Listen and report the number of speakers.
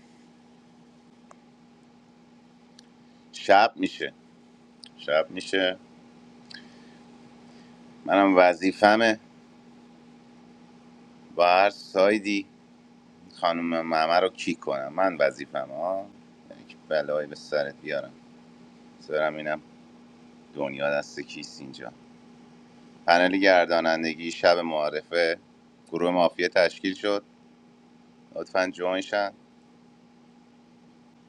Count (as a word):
one